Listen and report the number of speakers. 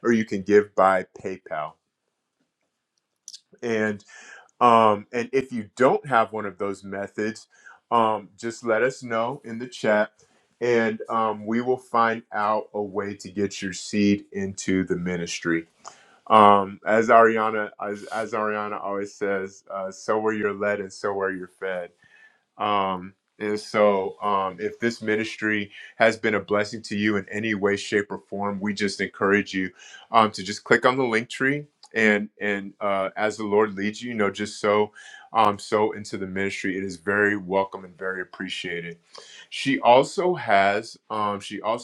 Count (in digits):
1